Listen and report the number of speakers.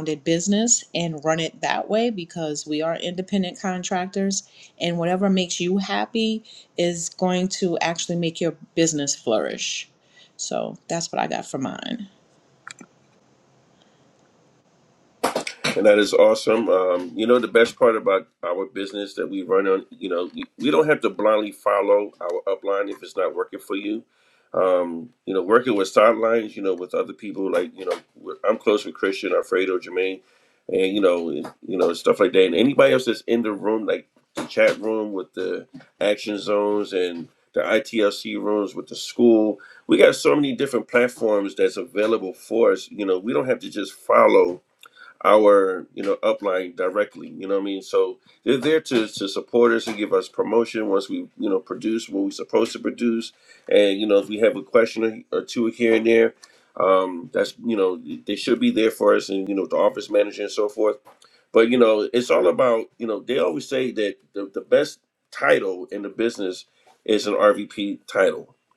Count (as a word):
two